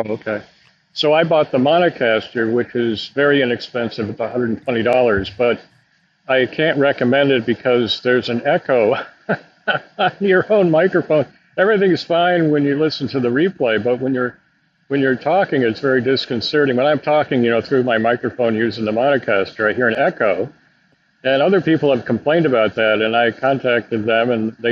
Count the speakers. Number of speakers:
1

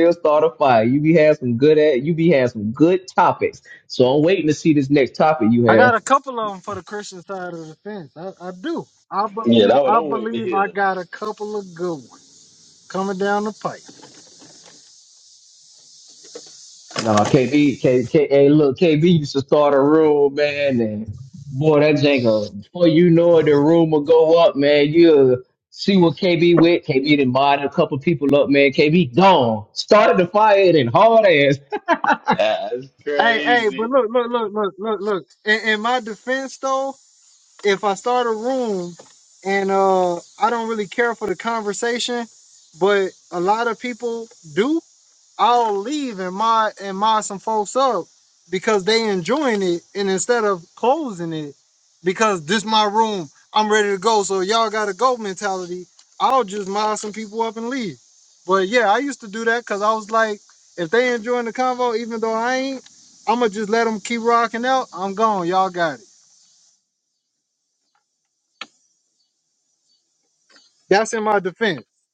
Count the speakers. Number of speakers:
3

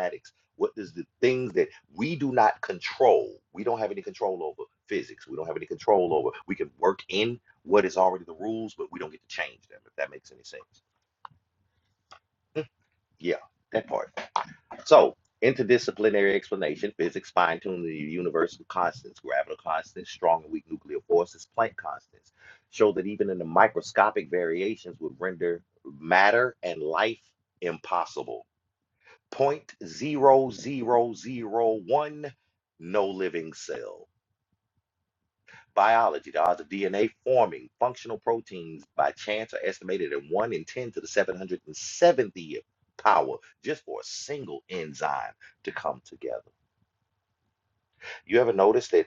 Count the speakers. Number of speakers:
1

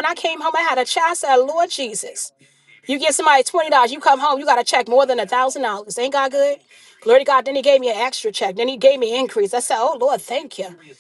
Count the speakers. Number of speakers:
1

